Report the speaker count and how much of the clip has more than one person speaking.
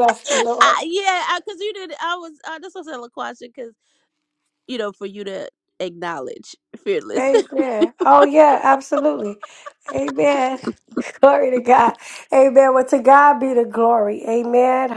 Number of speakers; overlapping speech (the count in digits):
2, about 1%